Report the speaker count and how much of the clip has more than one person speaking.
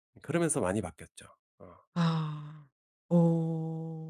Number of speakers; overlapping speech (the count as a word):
two, no overlap